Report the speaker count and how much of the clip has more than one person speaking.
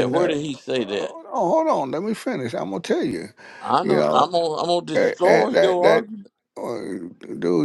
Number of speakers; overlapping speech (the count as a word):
two, about 30%